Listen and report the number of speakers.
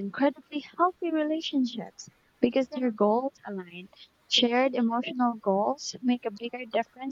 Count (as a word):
one